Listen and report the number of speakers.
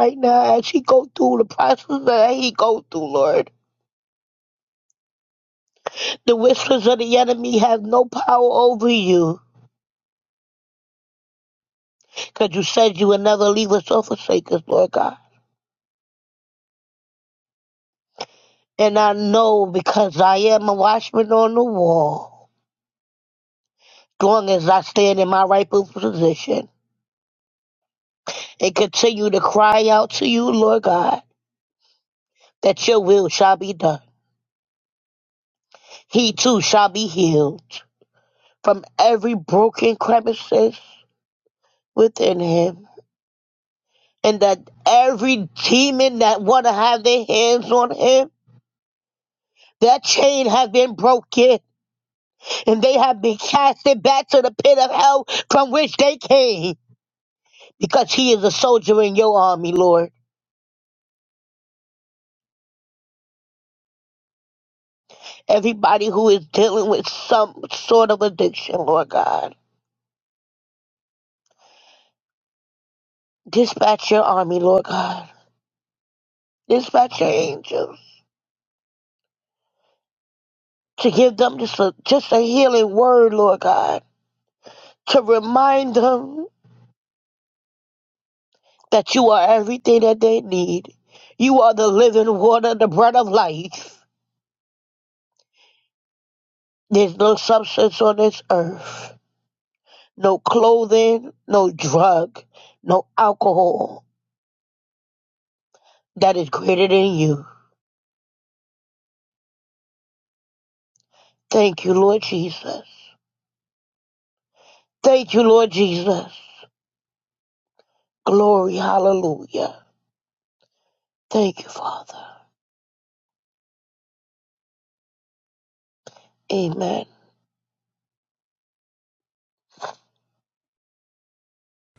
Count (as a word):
one